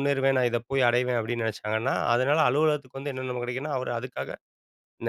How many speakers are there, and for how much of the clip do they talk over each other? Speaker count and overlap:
1, no overlap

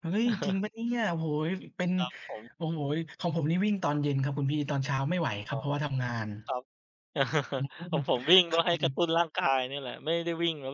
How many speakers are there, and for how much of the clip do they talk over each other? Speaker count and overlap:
2, about 6%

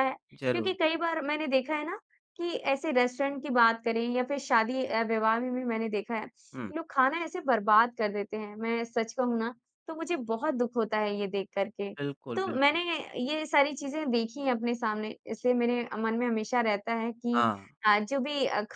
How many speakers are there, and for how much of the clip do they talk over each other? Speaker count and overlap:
2, about 3%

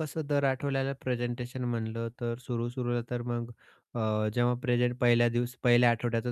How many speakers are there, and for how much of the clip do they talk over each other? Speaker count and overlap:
1, no overlap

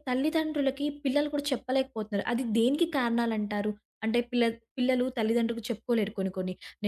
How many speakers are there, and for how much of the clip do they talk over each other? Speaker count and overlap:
1, no overlap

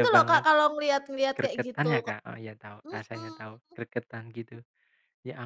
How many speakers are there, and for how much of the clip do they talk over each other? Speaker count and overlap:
2, about 32%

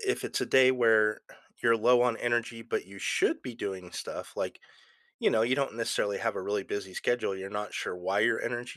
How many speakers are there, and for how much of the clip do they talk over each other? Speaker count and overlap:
1, no overlap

